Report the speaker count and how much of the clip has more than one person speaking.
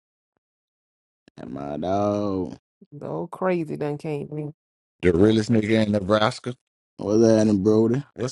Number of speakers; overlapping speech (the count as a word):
three, no overlap